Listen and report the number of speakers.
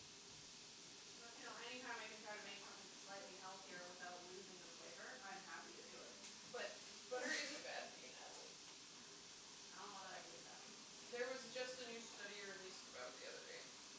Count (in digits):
2